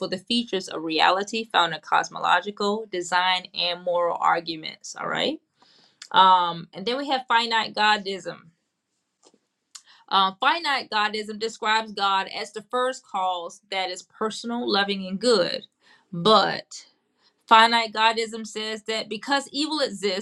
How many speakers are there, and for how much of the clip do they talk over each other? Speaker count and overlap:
1, no overlap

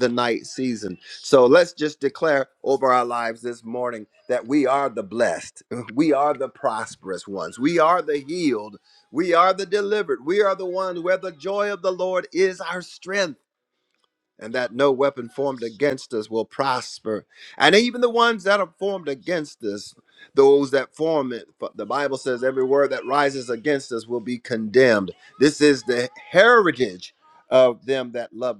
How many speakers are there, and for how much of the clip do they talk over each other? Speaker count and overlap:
1, no overlap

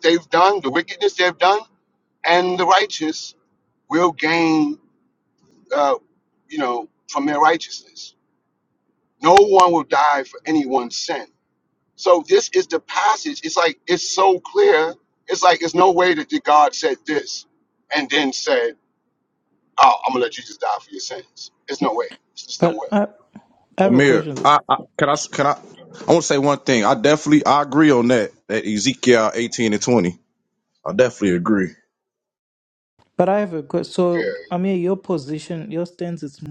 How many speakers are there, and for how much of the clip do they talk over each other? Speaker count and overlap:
3, about 3%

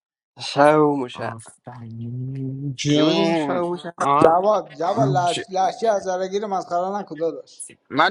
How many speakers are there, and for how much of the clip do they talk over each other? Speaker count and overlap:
3, about 17%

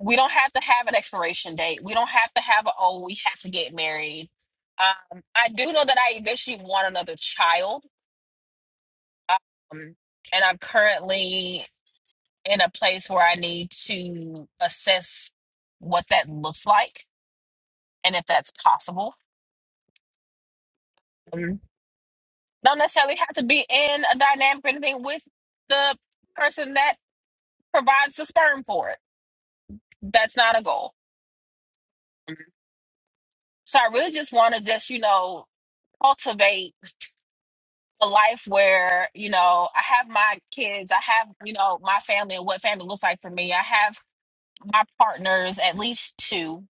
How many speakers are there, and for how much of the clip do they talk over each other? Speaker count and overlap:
1, no overlap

